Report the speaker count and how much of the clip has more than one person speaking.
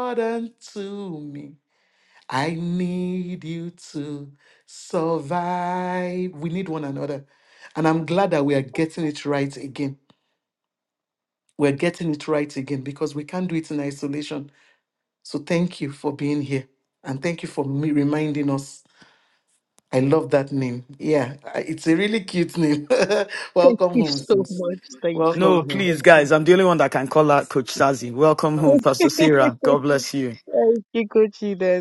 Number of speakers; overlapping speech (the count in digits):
3, about 6%